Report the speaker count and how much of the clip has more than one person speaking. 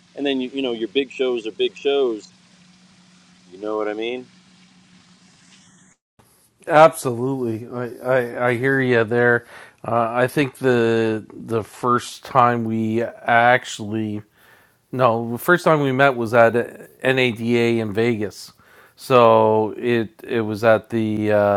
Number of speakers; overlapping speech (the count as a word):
two, no overlap